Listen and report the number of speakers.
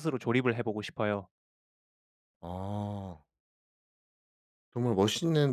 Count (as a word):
two